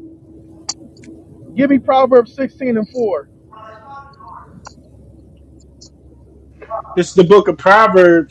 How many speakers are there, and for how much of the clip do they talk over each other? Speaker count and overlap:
two, no overlap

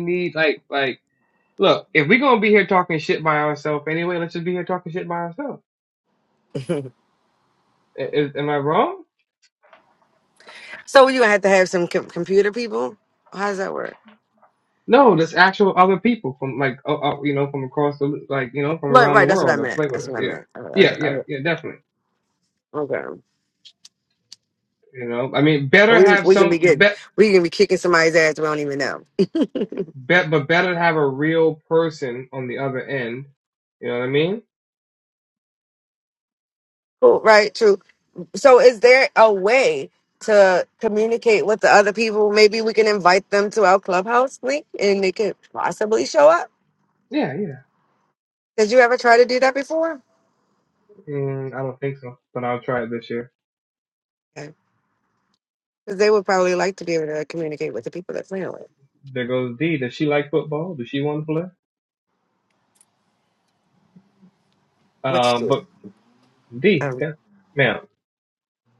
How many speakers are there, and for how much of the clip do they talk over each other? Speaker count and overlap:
two, about 5%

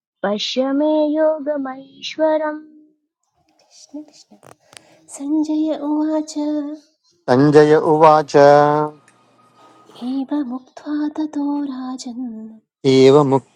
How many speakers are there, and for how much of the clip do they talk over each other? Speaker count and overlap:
three, no overlap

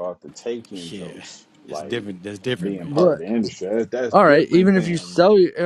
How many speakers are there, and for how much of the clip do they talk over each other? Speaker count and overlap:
three, about 41%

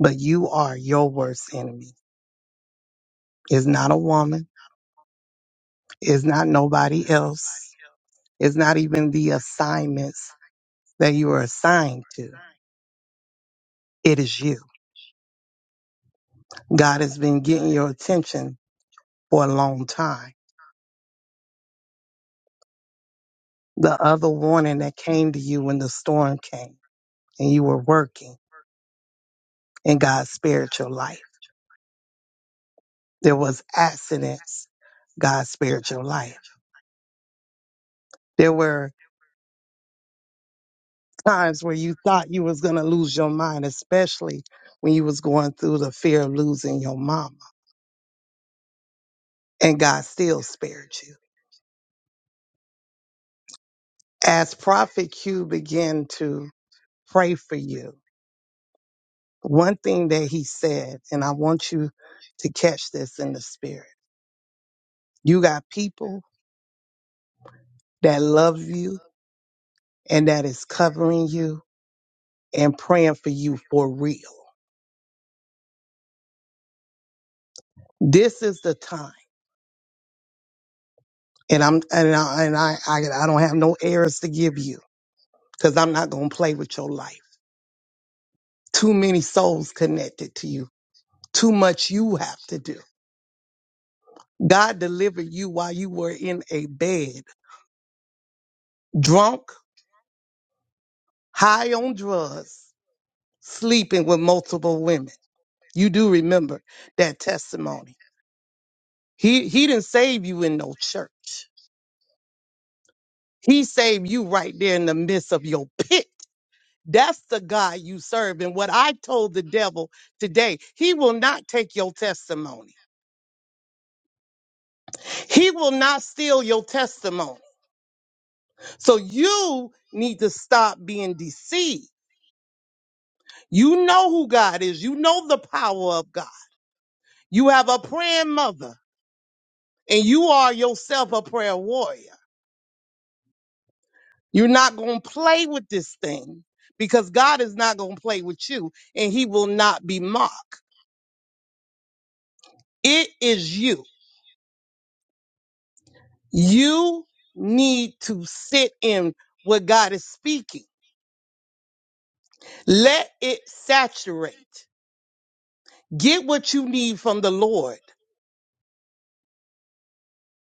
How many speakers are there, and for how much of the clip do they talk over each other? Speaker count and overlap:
one, no overlap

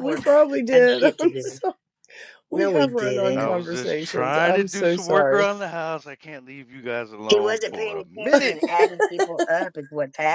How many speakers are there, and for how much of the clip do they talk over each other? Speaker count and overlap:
three, about 52%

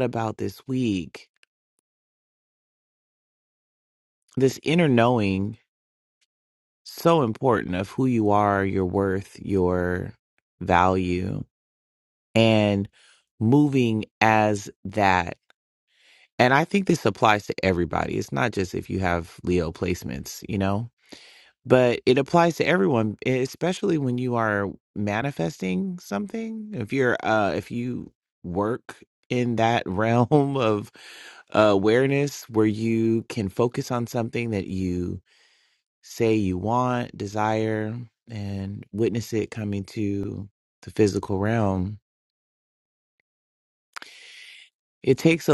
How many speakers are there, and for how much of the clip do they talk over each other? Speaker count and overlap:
one, no overlap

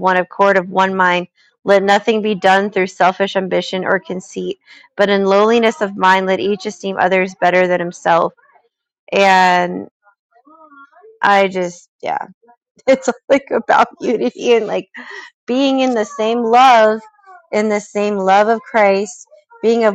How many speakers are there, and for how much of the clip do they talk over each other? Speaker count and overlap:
one, no overlap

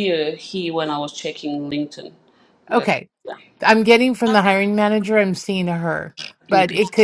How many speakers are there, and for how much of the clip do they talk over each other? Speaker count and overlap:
two, about 8%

